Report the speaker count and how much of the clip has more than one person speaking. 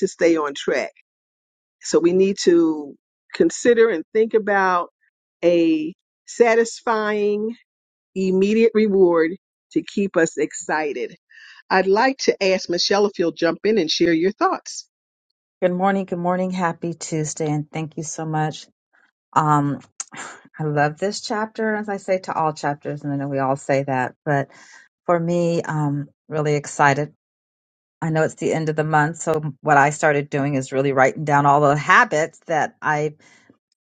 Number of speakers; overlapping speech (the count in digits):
2, no overlap